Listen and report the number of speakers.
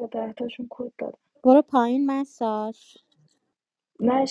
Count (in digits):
2